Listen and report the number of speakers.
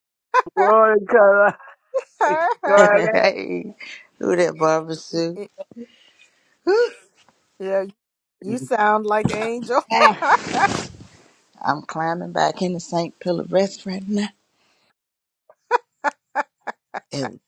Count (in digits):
3